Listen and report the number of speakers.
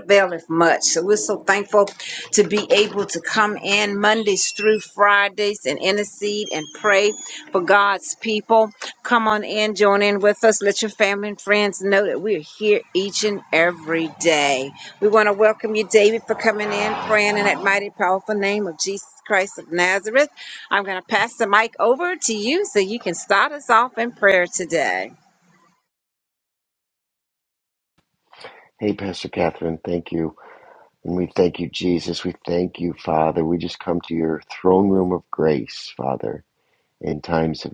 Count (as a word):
two